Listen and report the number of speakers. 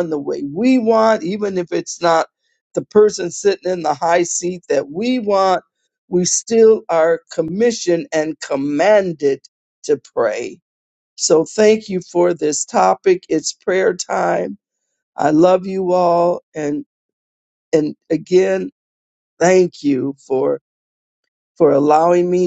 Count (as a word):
one